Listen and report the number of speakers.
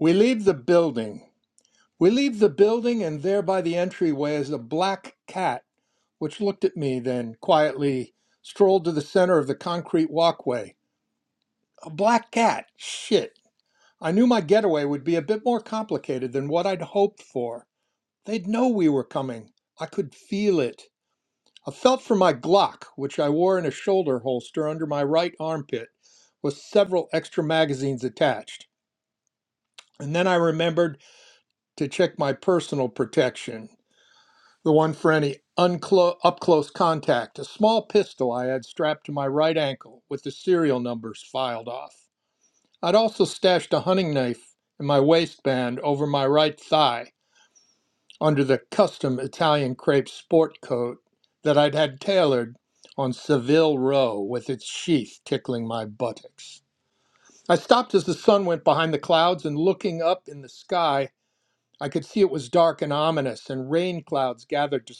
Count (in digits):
1